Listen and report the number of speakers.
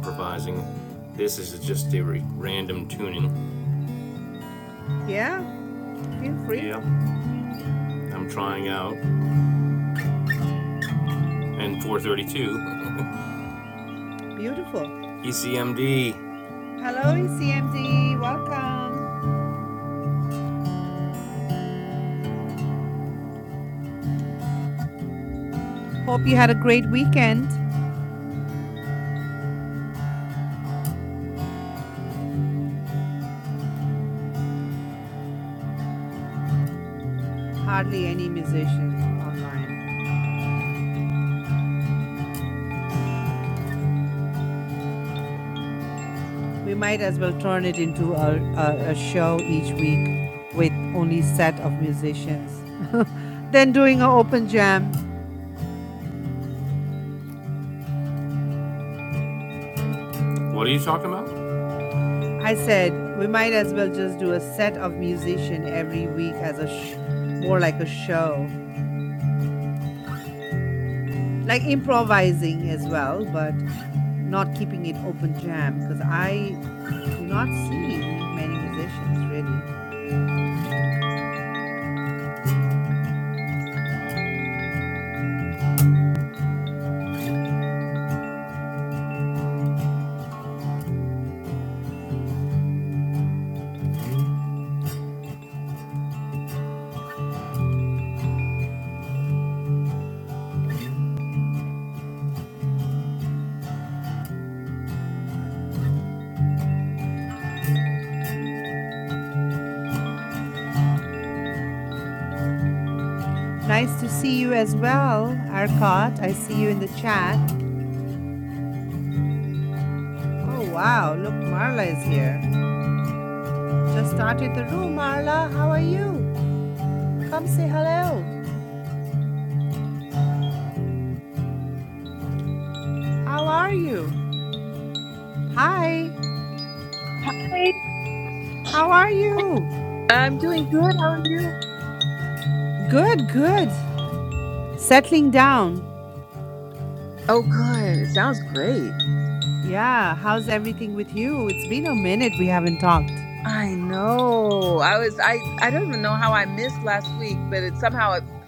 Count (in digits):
3